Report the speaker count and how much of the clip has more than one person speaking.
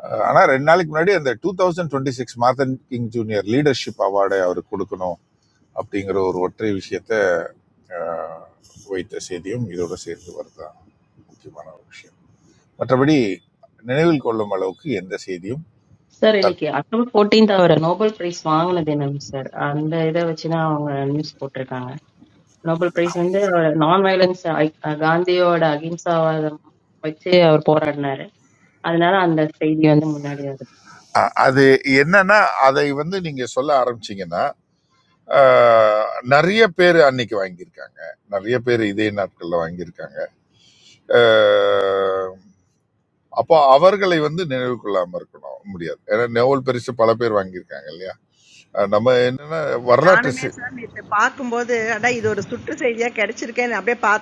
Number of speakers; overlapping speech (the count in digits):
3, about 1%